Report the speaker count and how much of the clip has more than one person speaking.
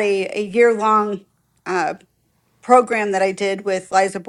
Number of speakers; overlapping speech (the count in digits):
1, no overlap